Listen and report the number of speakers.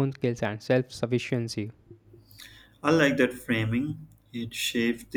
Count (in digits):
2